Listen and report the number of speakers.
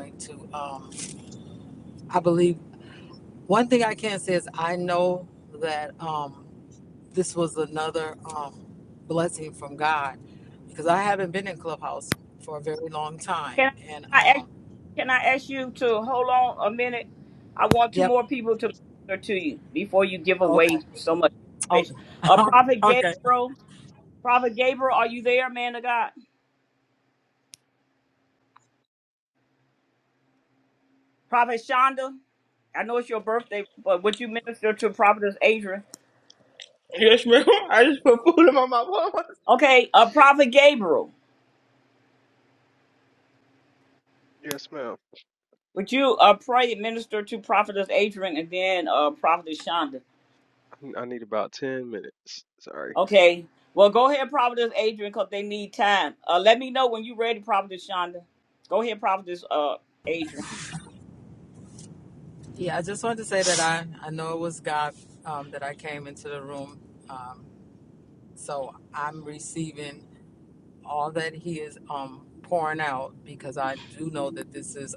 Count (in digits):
4